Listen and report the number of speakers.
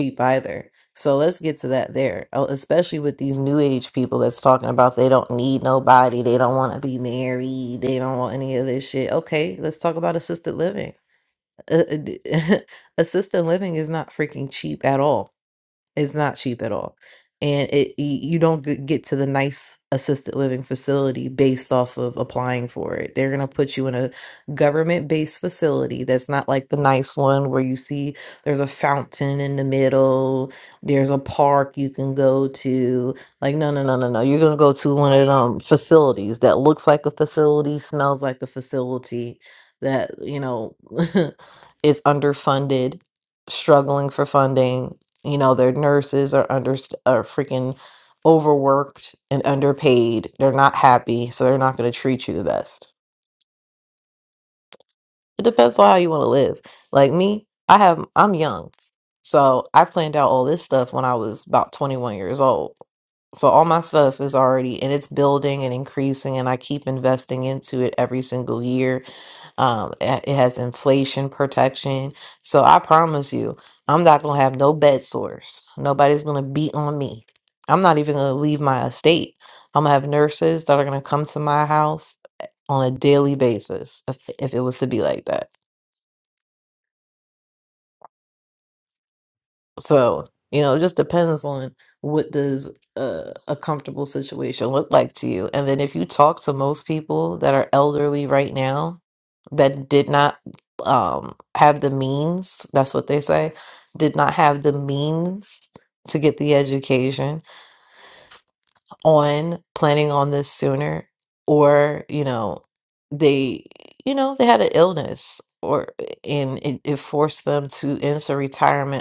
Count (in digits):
1